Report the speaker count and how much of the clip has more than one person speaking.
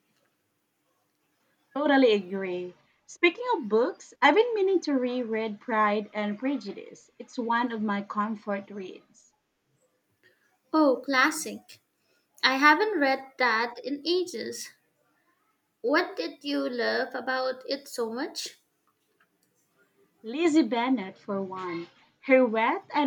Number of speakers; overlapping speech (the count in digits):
2, no overlap